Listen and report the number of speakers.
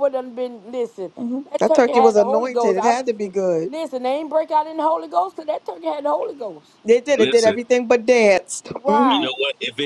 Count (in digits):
3